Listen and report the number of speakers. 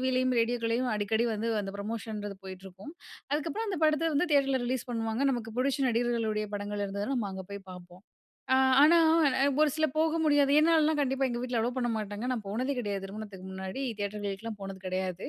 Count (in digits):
1